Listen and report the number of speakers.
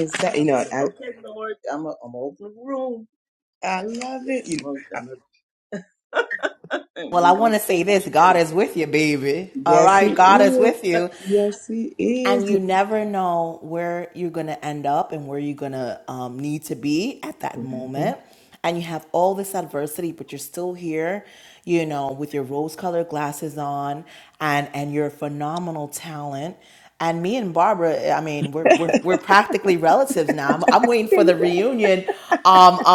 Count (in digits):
3